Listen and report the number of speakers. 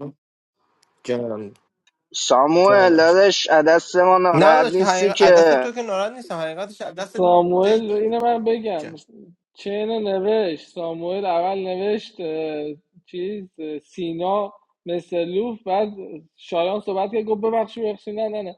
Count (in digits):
3